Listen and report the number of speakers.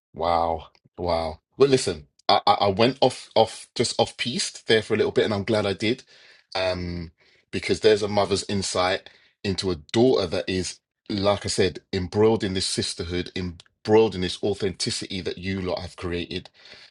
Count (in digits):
1